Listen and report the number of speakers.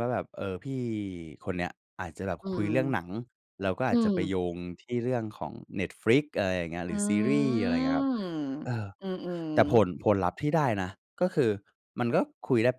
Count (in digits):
2